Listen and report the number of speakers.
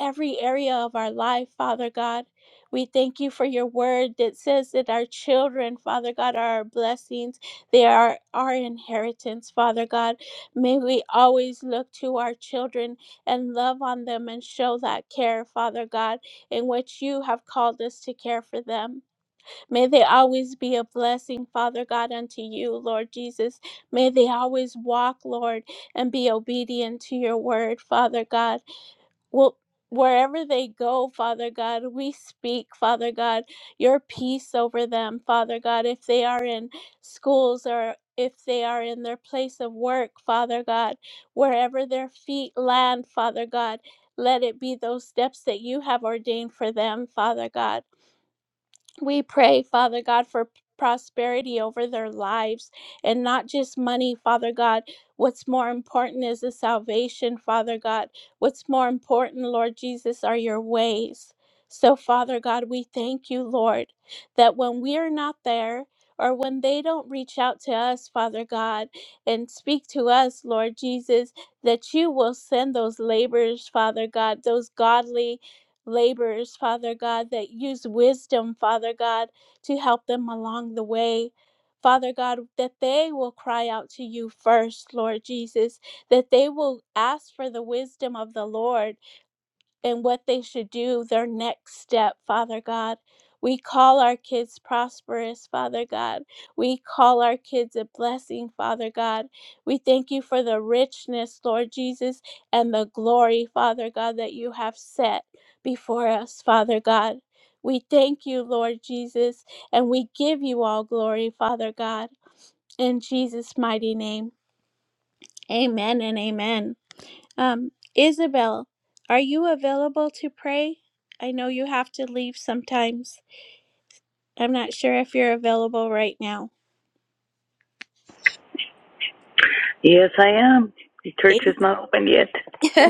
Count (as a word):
two